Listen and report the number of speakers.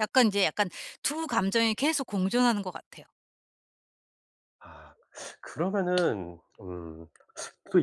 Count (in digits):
2